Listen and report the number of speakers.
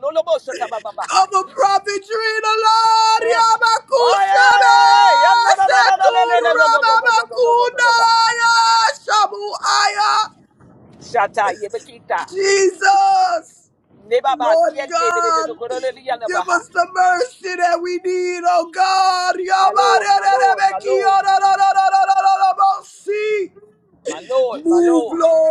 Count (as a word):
two